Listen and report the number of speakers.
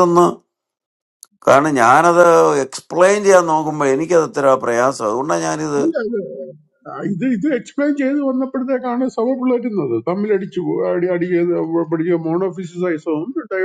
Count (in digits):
2